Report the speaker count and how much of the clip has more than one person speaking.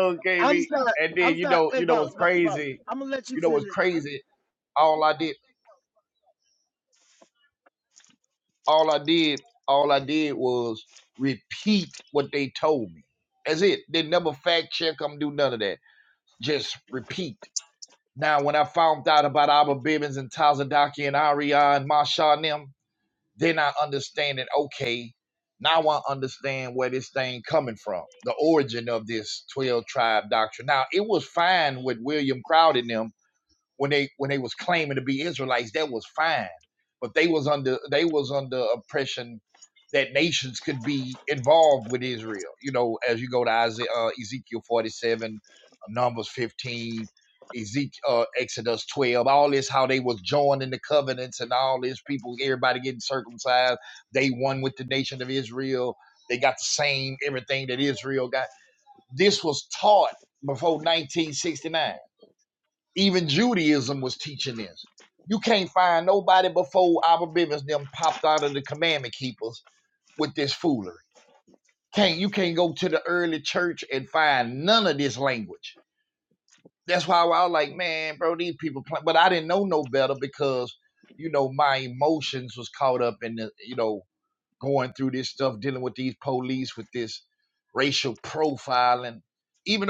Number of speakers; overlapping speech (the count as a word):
two, about 3%